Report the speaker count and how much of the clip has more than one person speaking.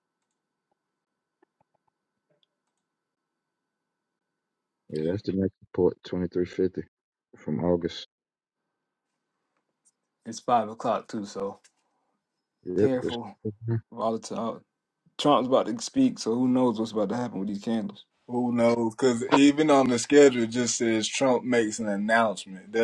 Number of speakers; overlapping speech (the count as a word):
three, about 2%